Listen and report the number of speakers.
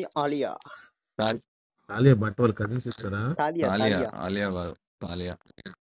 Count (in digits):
3